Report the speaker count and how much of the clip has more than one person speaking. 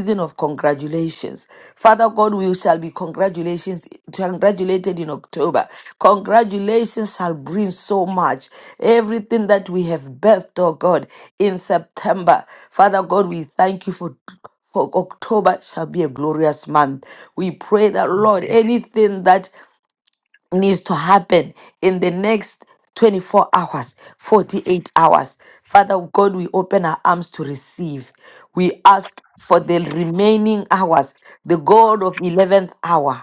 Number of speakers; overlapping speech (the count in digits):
1, no overlap